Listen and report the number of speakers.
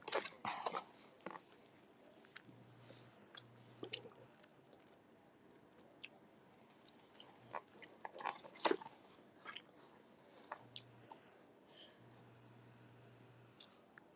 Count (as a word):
zero